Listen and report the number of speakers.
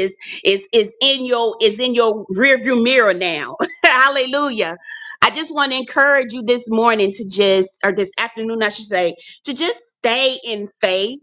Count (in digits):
1